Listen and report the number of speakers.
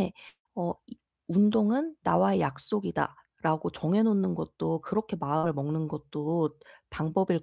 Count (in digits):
1